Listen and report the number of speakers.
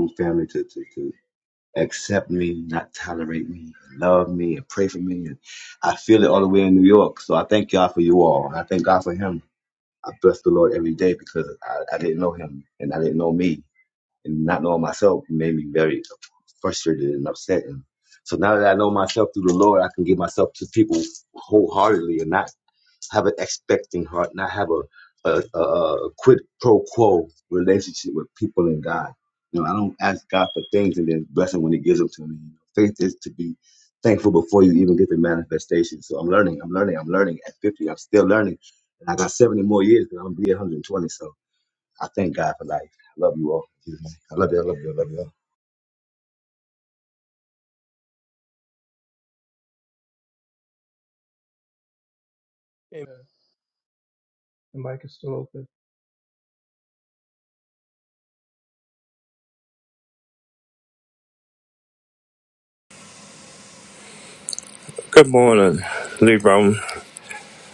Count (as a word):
three